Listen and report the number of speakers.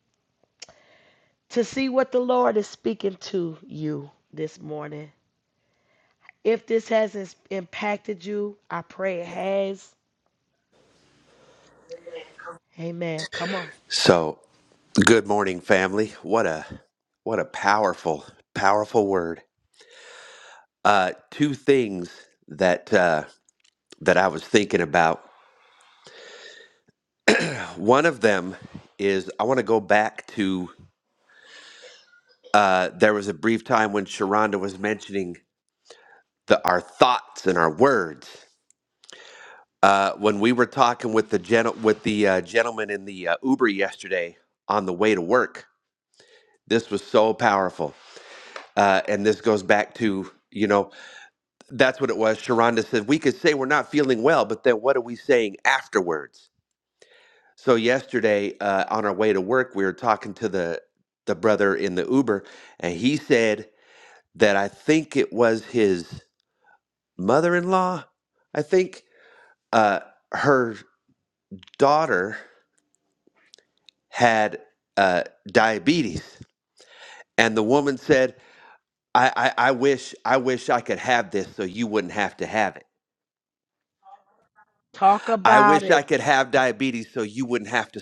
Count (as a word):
two